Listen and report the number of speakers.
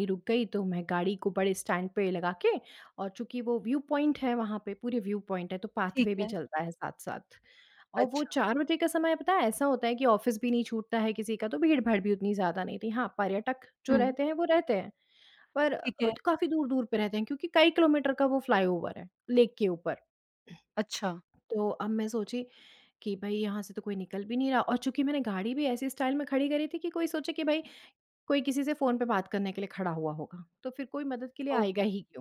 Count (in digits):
2